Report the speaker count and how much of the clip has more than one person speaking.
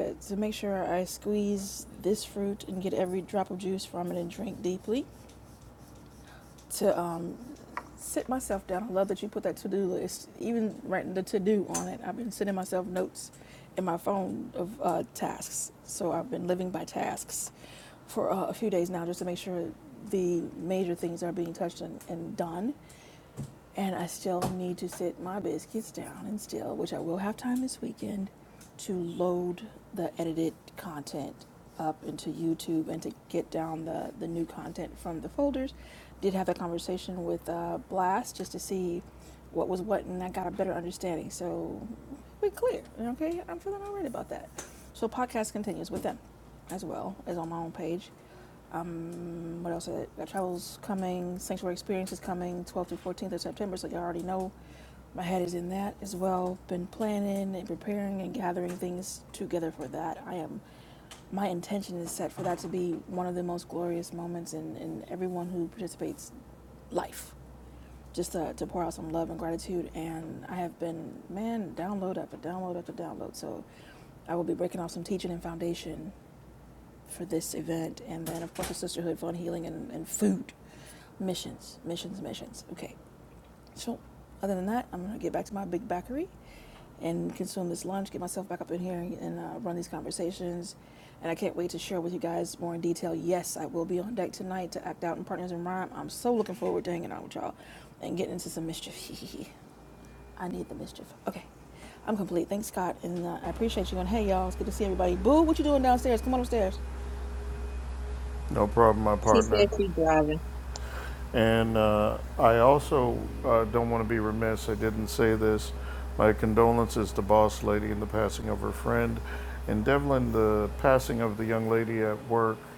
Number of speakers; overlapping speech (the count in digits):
3, under 1%